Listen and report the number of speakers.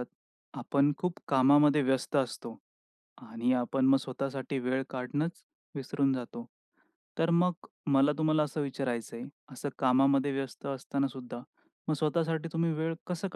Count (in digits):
1